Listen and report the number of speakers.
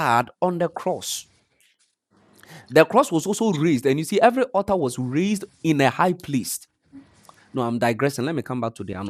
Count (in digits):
1